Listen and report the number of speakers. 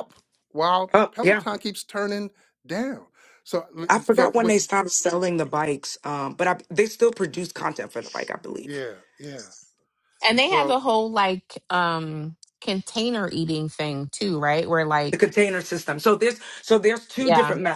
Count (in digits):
3